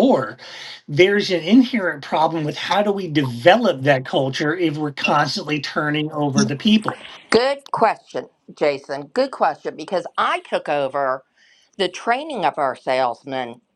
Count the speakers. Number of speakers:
2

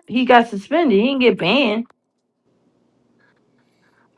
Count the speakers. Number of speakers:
1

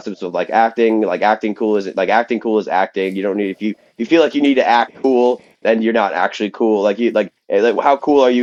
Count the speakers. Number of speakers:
1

